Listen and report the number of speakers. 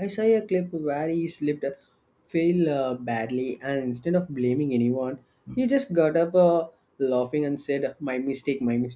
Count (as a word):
one